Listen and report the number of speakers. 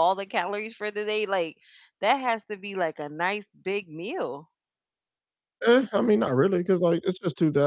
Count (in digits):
2